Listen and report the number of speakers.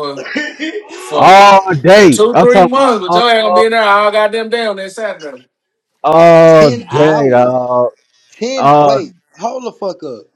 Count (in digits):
3